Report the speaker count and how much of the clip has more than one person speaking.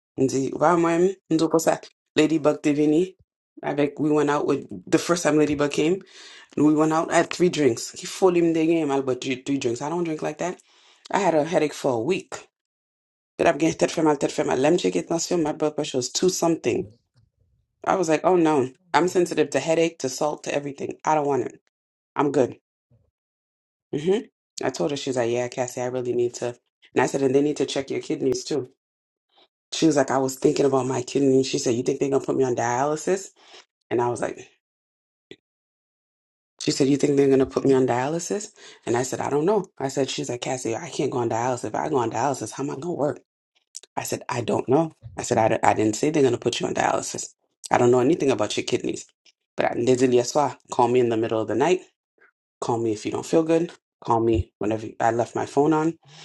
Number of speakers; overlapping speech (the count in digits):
1, no overlap